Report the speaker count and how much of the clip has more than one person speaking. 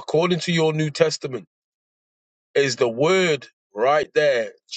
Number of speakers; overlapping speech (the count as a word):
one, no overlap